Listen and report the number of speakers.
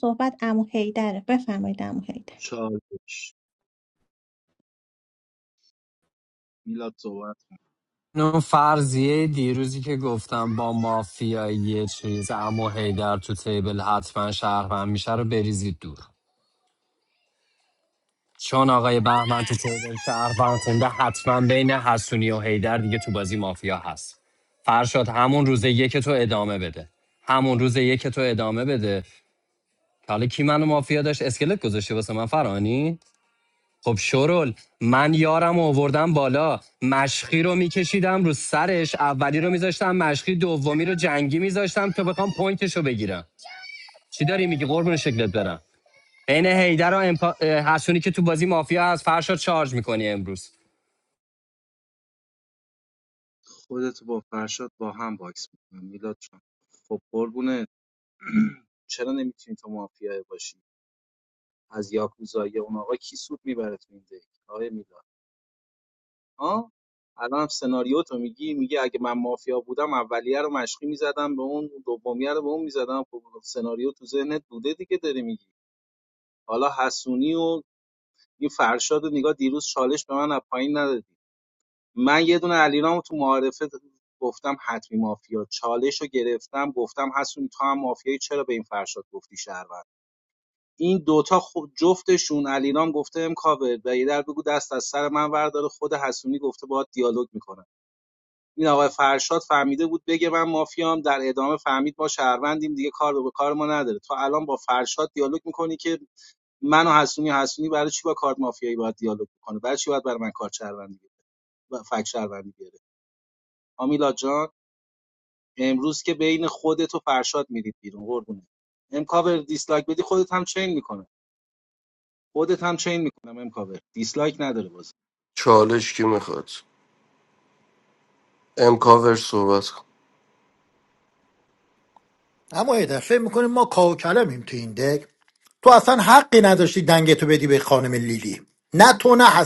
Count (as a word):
five